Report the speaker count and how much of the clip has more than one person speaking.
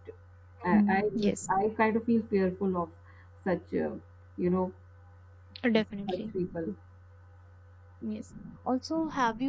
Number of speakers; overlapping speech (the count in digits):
2, about 10%